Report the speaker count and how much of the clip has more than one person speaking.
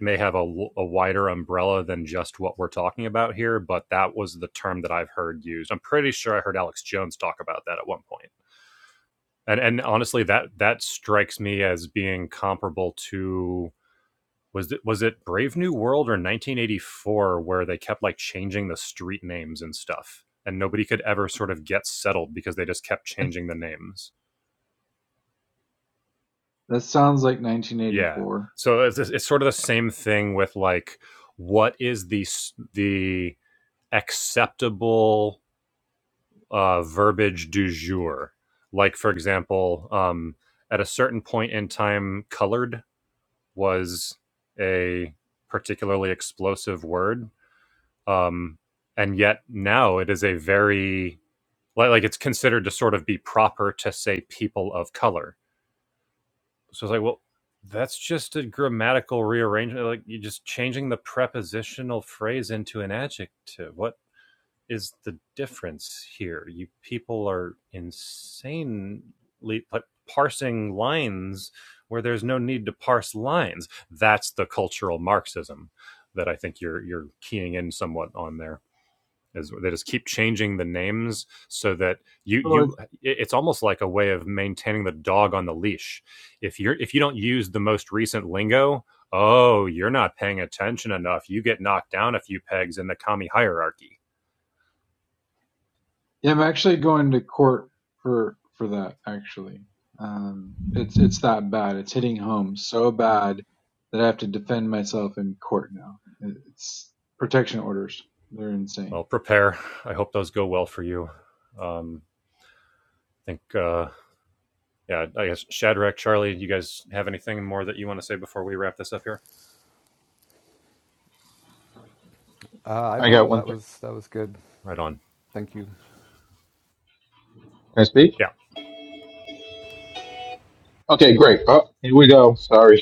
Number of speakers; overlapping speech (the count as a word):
four, about 1%